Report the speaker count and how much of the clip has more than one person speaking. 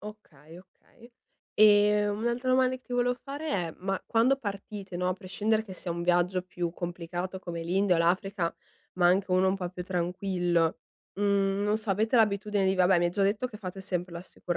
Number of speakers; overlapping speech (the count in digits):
1, no overlap